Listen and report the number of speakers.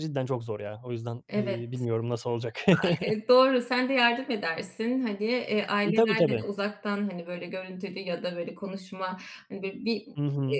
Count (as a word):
two